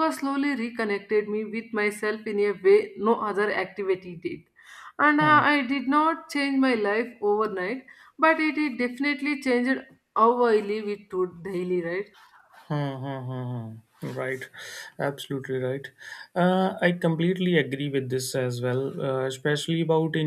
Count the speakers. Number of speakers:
2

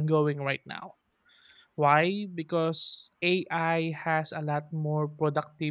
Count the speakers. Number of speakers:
1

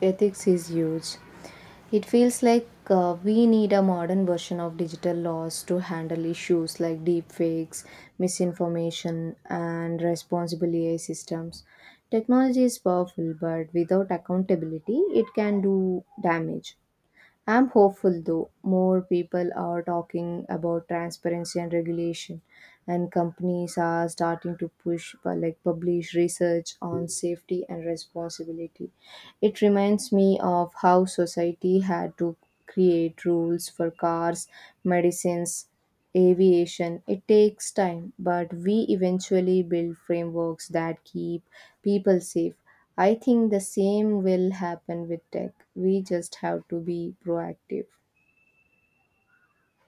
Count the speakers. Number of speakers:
1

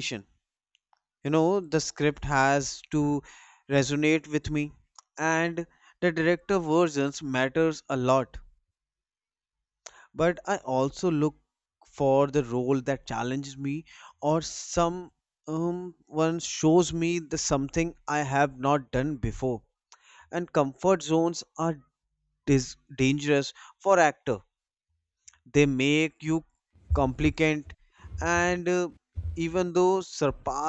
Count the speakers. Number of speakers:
1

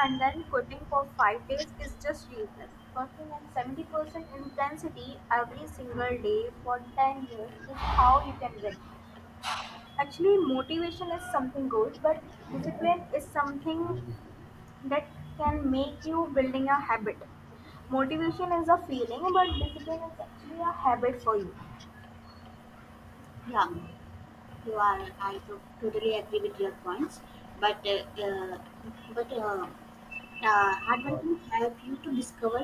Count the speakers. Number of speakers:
2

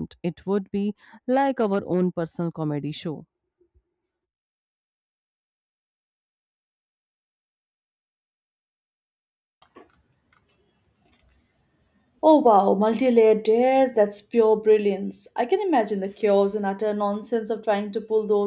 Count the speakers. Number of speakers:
2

